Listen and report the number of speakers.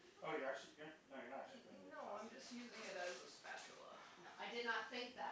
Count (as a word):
three